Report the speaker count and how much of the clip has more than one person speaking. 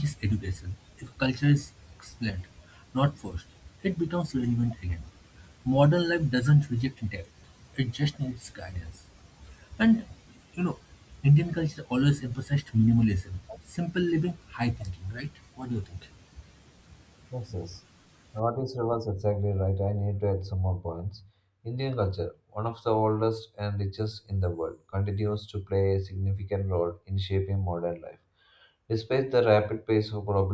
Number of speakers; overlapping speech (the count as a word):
two, no overlap